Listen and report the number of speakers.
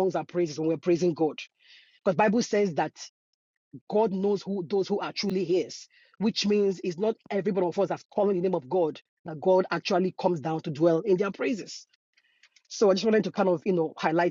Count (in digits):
1